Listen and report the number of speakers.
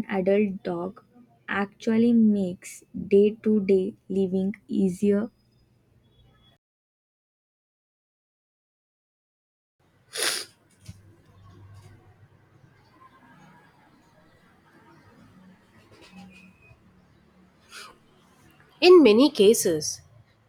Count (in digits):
2